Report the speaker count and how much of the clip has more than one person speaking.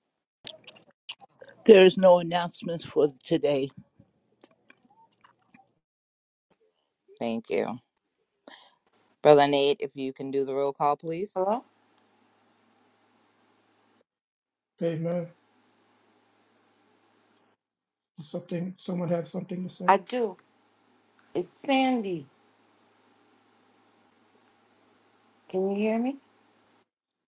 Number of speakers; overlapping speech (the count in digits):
4, under 1%